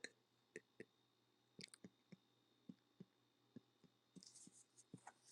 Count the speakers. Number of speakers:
0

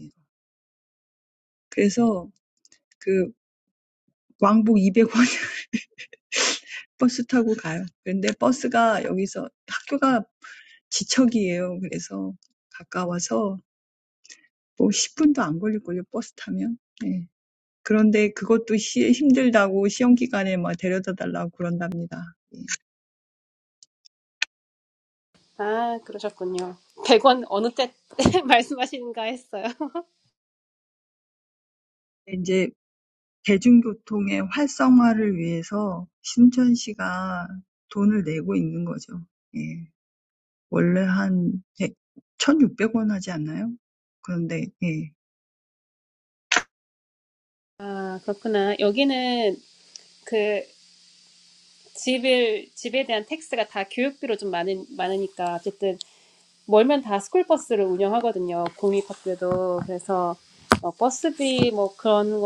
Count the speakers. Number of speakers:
2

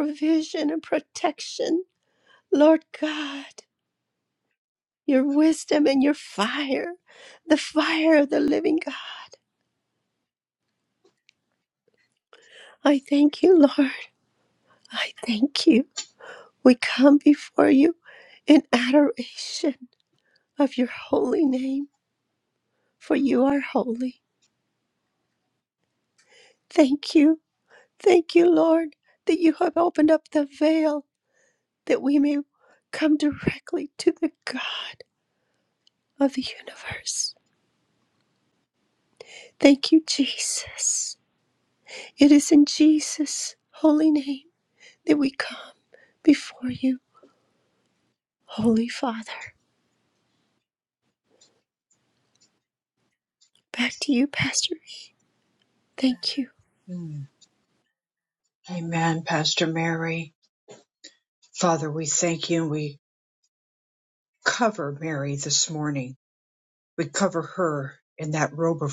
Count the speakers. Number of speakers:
2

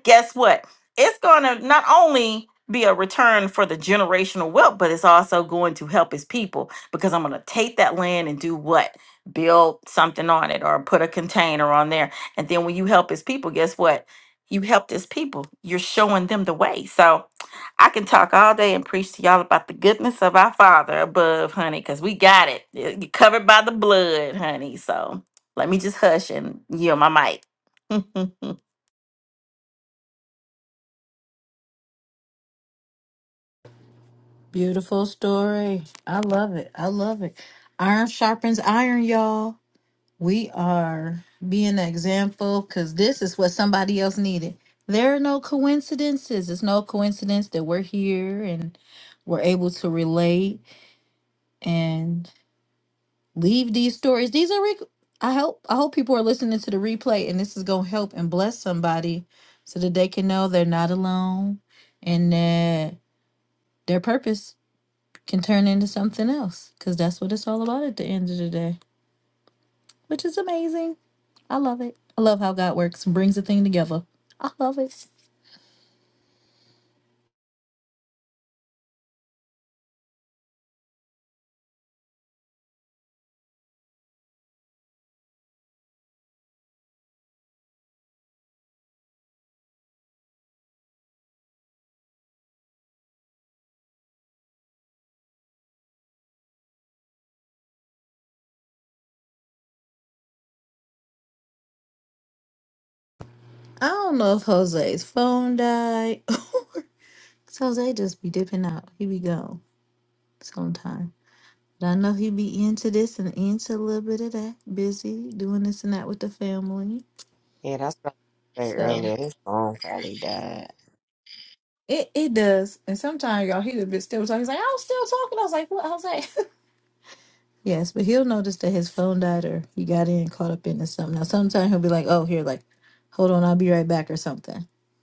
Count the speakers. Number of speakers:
3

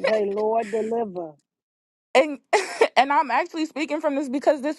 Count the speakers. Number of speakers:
2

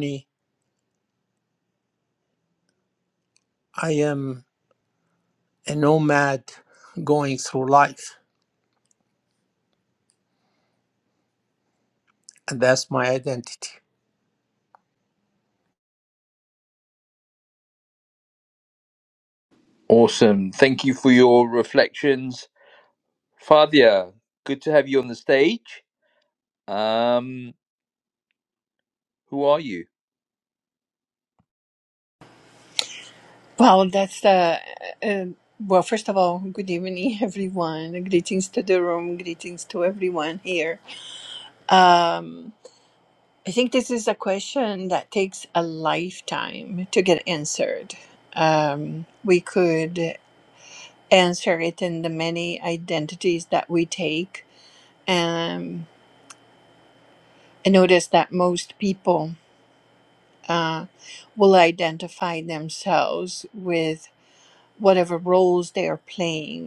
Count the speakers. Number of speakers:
3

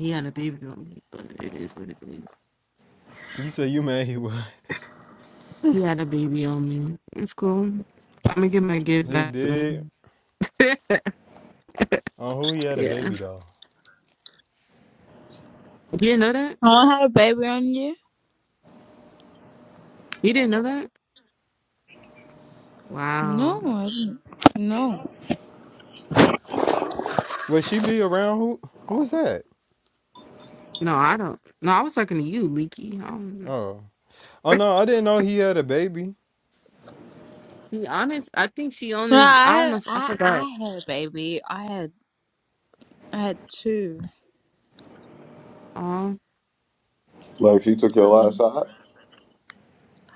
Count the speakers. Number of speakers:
4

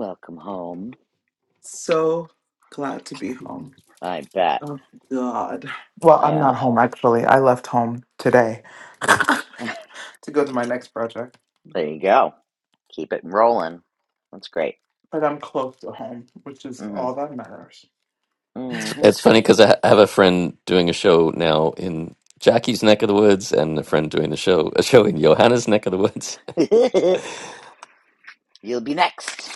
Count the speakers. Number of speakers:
3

